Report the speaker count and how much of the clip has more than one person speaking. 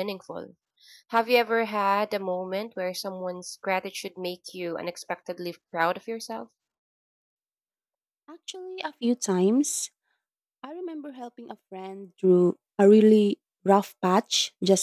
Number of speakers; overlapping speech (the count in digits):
2, no overlap